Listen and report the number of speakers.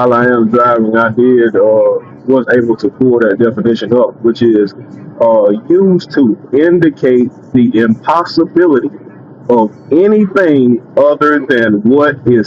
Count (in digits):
1